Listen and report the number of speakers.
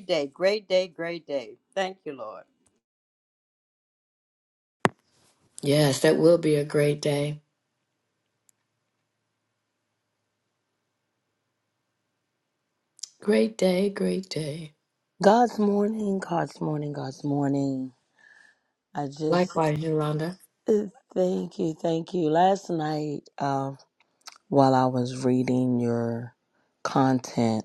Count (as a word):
three